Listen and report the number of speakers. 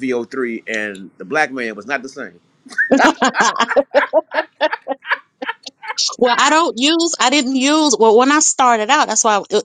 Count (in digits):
2